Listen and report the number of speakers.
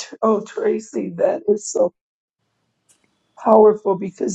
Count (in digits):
1